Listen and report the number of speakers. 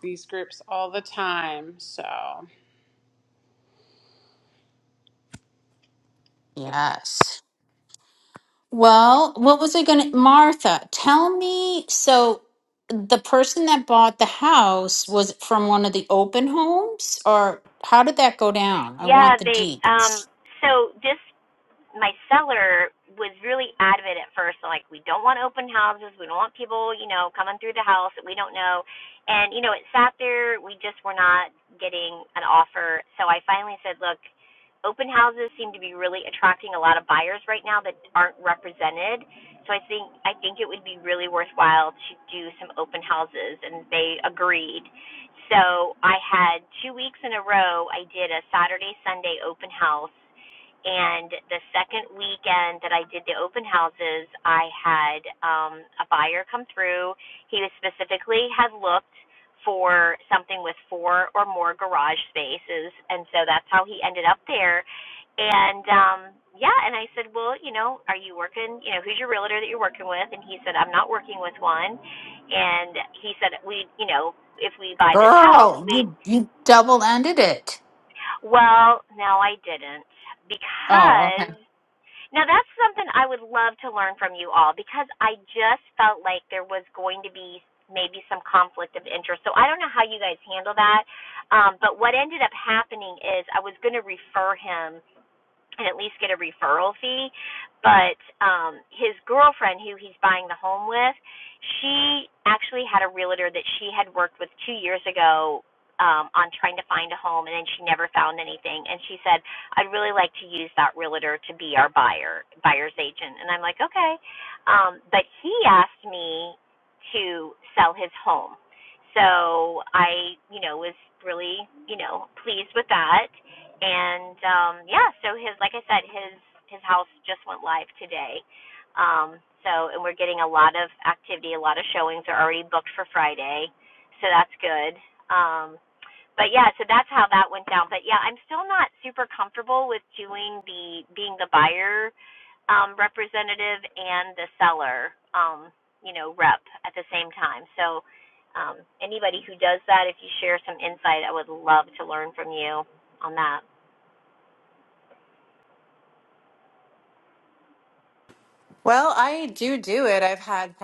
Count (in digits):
4